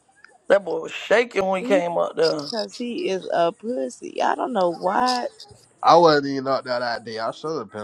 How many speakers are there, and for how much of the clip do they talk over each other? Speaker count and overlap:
three, about 3%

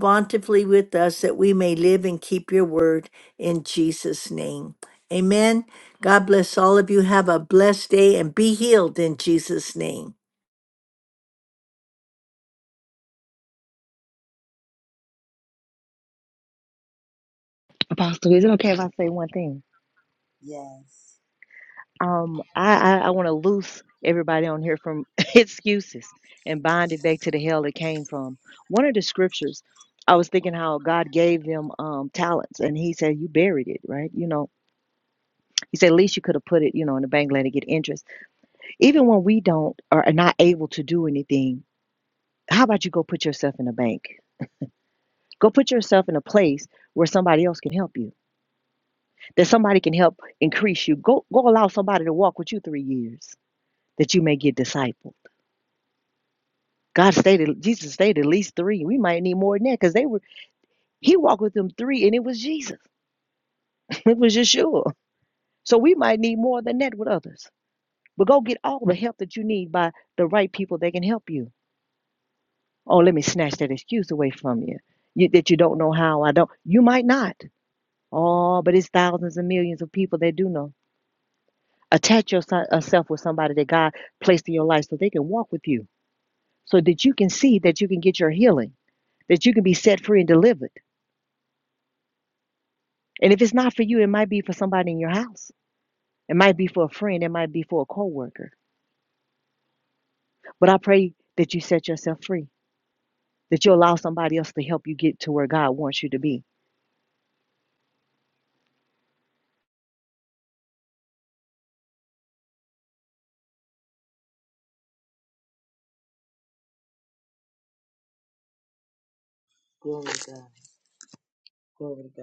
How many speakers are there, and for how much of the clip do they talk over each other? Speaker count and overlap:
three, no overlap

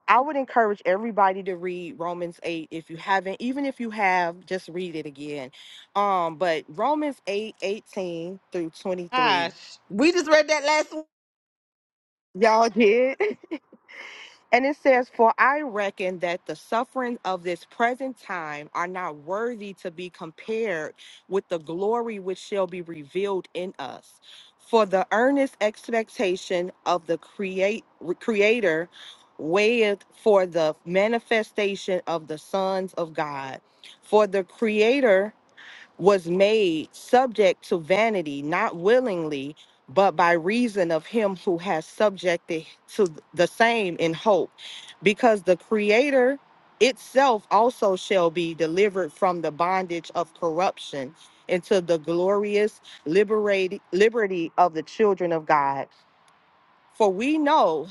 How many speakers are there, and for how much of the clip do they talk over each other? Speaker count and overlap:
two, about 1%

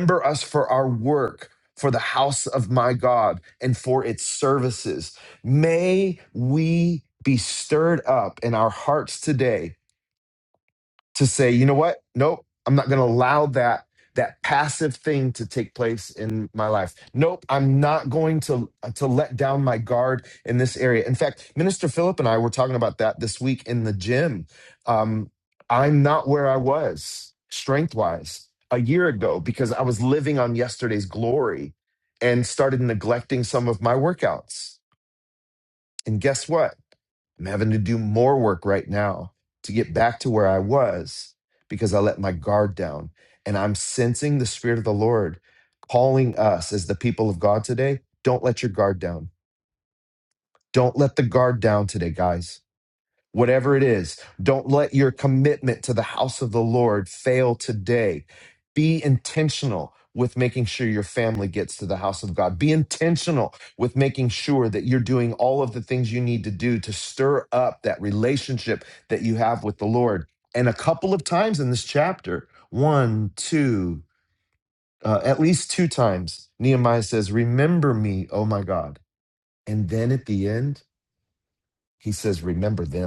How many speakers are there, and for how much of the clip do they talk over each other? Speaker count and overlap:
one, no overlap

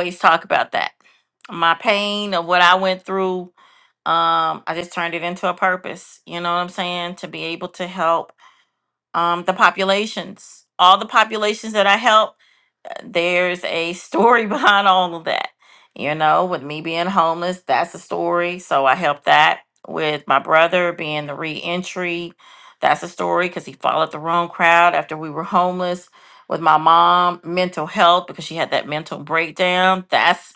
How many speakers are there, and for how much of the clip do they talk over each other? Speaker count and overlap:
one, no overlap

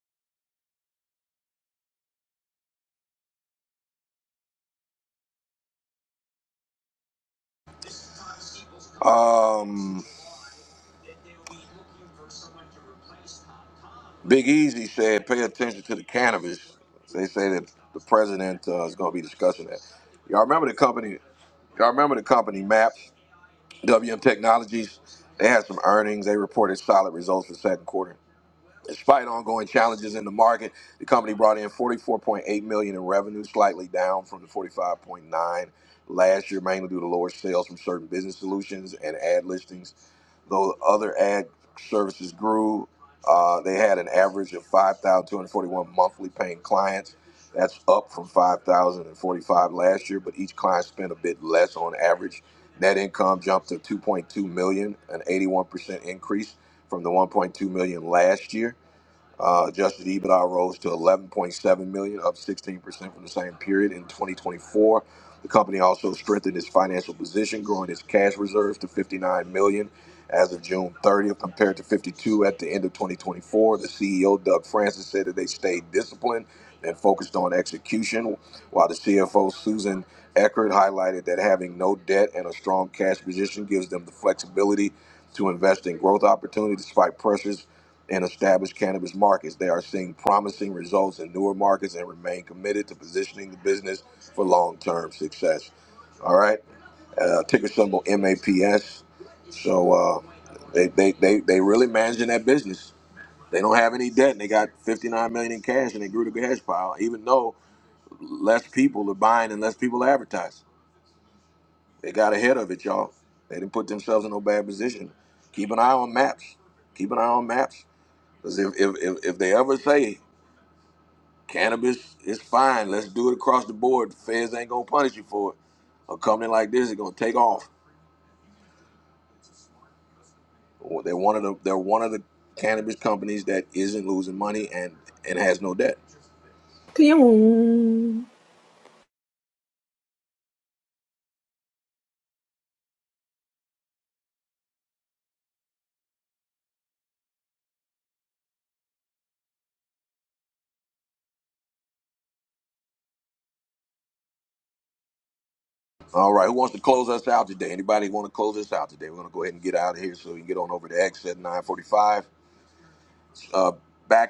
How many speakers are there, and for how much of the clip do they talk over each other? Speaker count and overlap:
two, no overlap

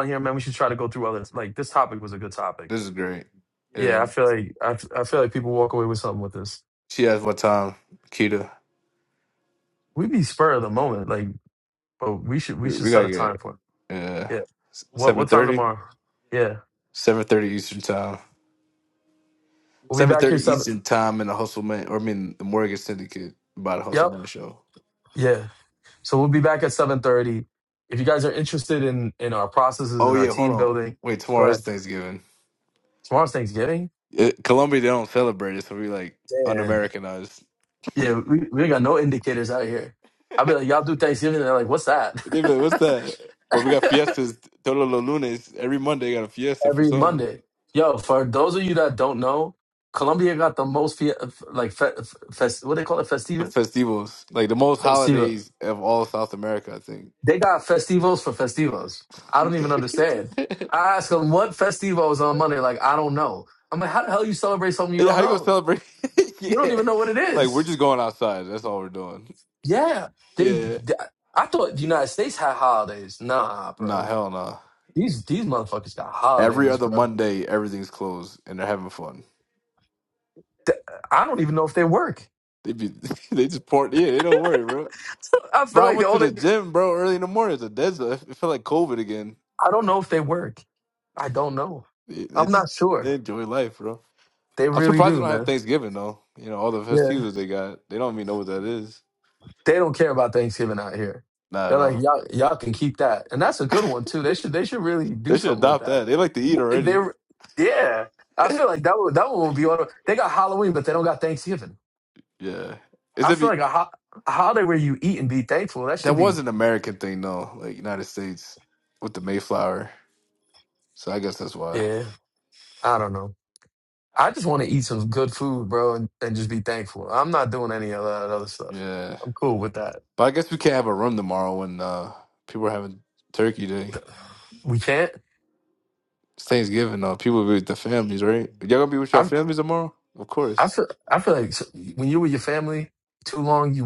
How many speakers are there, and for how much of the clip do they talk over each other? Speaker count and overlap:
two, about 8%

